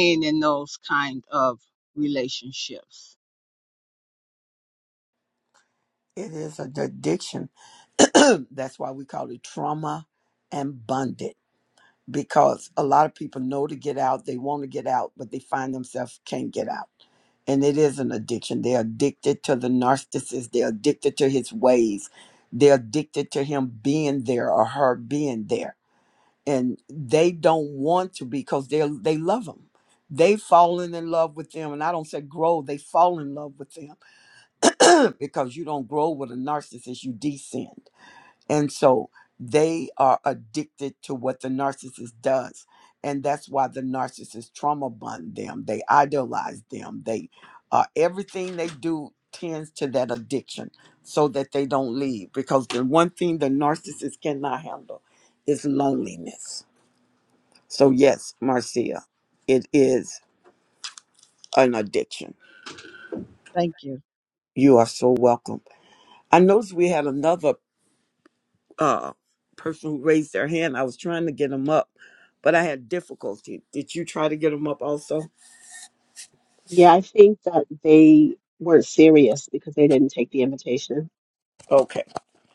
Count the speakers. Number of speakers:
three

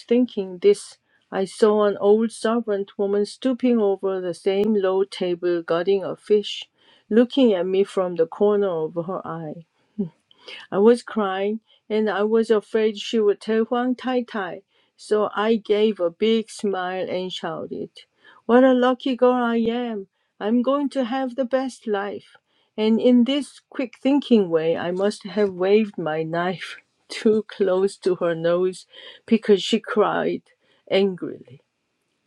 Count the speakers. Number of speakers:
one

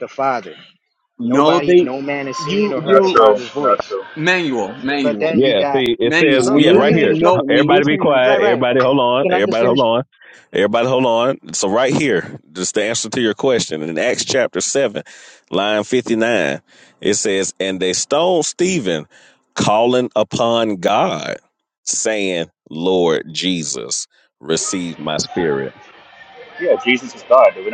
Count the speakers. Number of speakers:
four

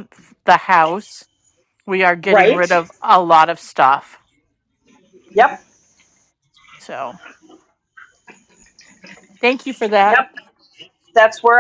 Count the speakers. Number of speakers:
two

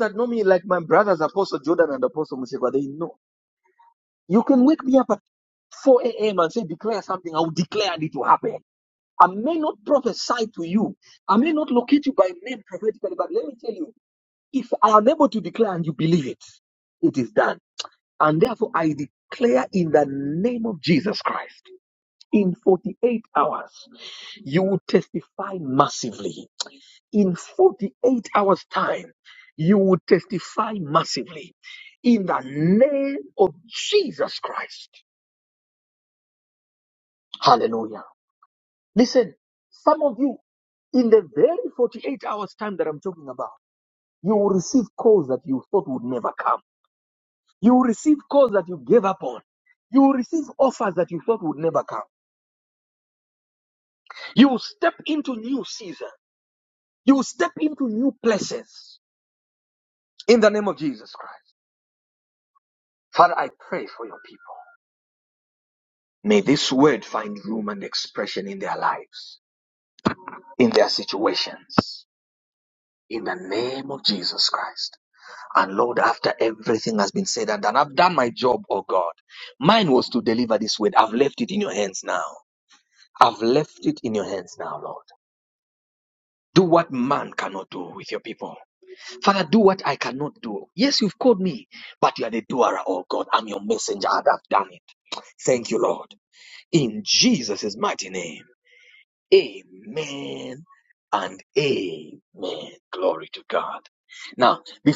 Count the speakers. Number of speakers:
one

